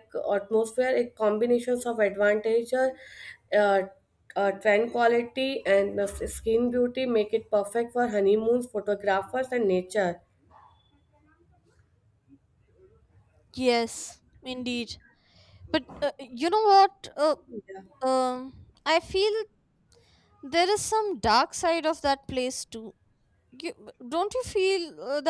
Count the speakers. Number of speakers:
2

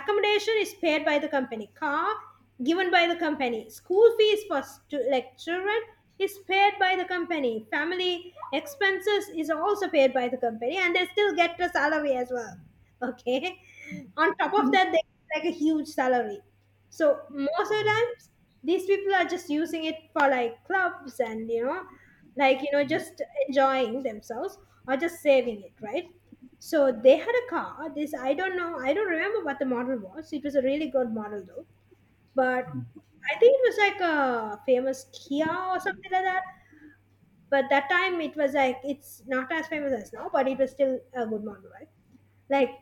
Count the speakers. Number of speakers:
1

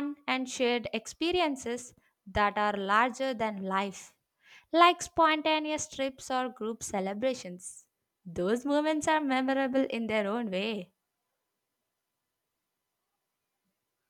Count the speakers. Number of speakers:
1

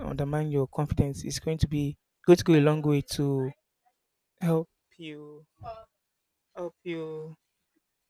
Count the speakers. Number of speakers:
1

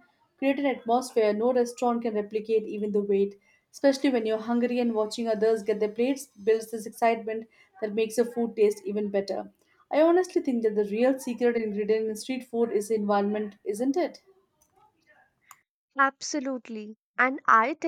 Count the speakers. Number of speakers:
2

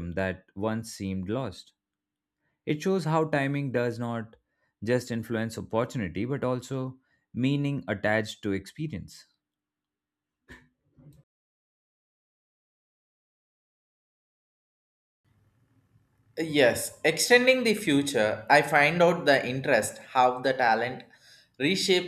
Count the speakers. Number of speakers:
2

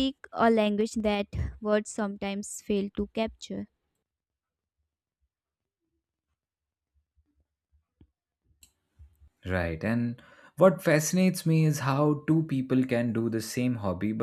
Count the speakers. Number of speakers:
2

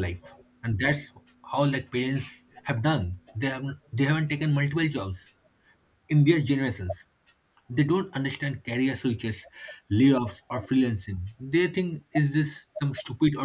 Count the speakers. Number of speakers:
1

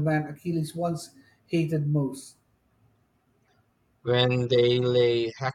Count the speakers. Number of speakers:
2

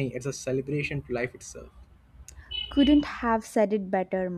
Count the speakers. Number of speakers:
2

